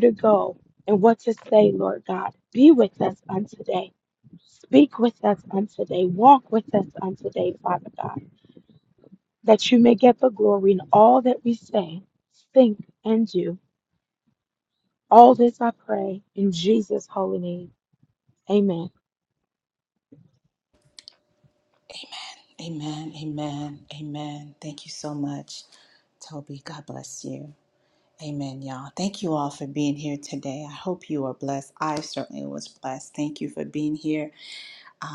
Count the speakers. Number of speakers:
2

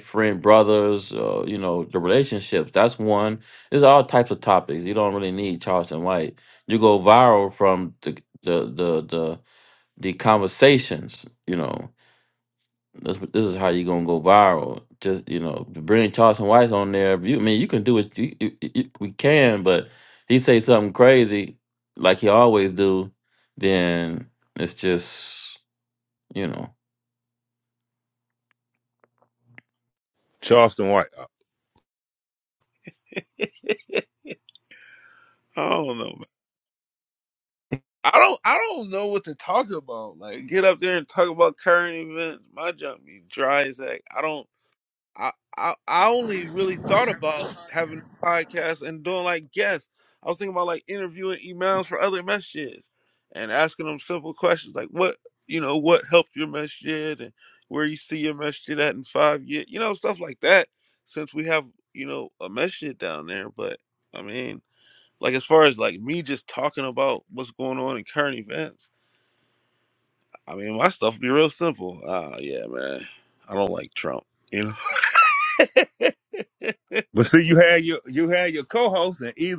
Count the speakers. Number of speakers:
3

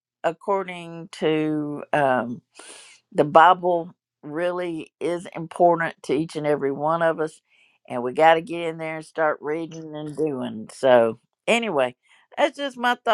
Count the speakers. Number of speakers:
1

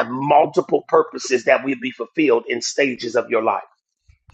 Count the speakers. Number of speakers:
1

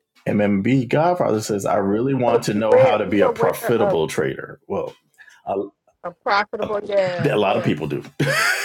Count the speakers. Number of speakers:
2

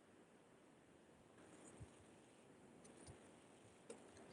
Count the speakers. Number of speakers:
0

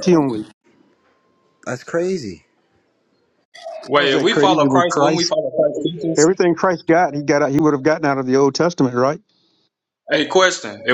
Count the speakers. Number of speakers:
3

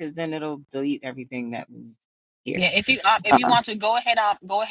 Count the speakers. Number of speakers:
2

